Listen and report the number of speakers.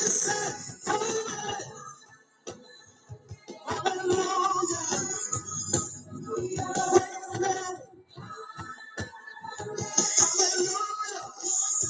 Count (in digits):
0